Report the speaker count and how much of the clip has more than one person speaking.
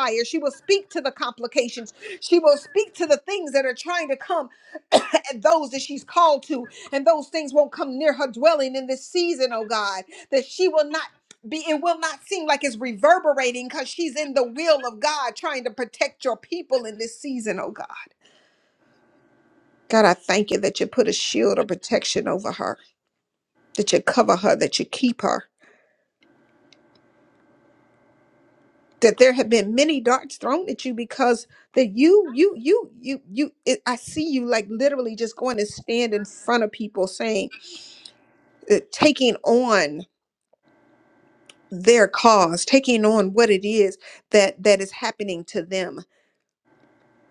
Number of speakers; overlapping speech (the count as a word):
one, no overlap